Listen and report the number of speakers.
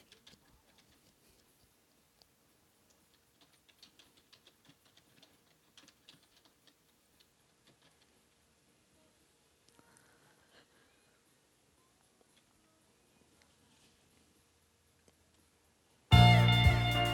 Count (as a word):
zero